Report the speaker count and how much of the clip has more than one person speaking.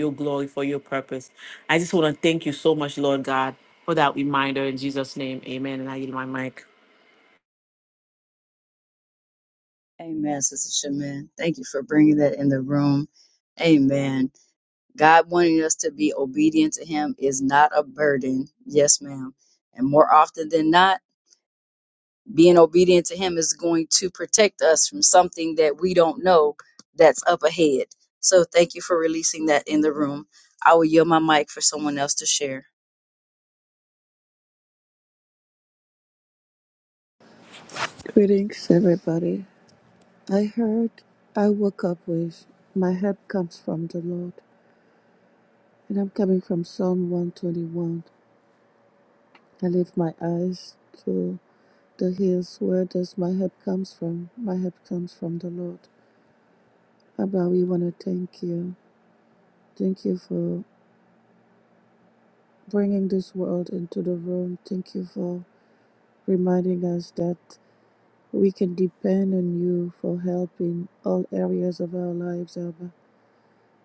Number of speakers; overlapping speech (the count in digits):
3, no overlap